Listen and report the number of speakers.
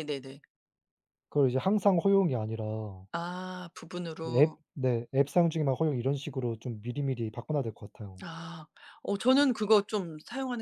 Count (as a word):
two